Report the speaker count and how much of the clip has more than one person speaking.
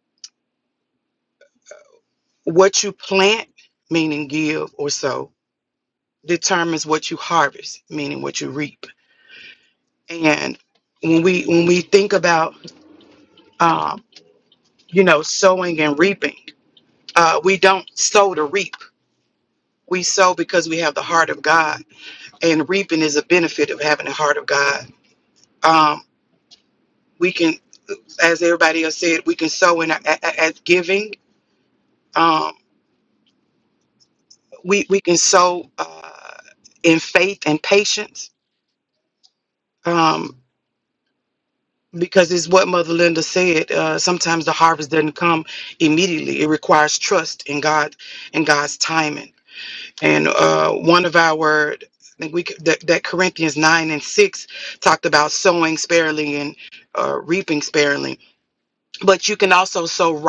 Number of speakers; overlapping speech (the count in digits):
1, no overlap